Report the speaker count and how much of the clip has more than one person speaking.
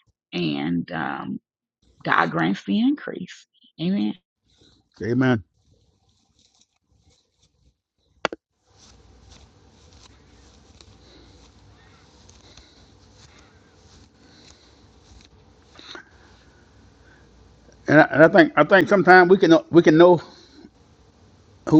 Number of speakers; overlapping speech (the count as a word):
two, no overlap